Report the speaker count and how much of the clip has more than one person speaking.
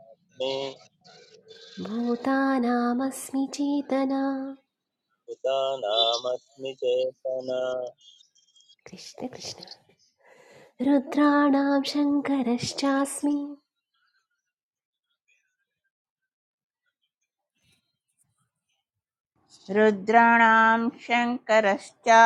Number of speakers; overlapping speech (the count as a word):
three, no overlap